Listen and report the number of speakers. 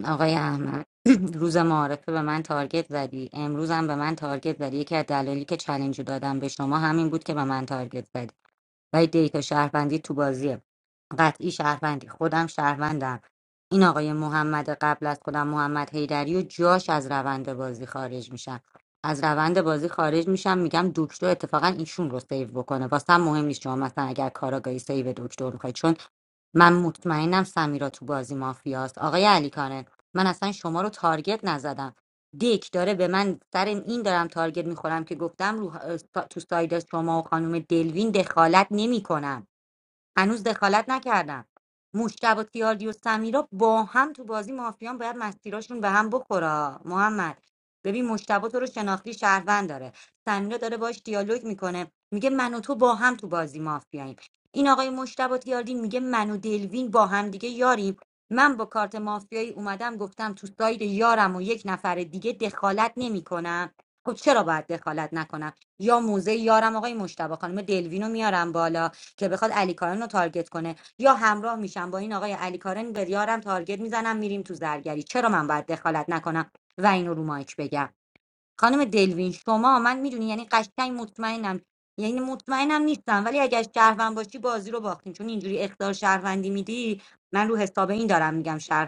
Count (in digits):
1